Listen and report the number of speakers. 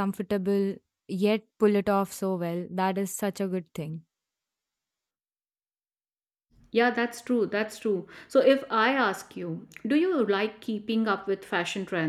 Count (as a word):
two